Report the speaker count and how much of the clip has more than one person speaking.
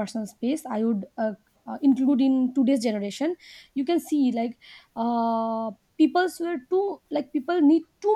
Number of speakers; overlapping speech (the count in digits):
1, no overlap